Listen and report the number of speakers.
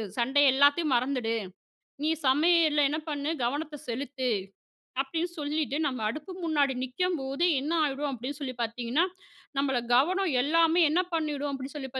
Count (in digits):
1